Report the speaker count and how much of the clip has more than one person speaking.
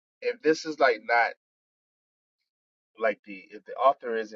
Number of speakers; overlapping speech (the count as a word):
one, no overlap